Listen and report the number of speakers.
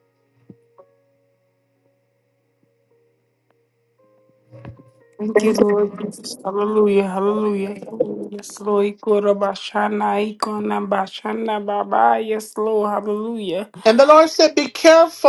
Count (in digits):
2